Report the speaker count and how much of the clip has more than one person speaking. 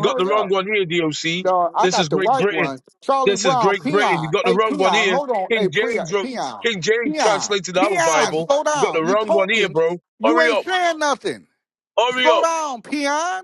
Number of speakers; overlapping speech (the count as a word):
two, about 58%